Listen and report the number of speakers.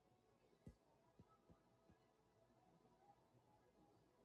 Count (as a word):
zero